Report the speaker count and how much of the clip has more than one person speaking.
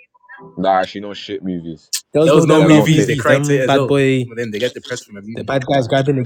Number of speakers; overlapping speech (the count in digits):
3, about 32%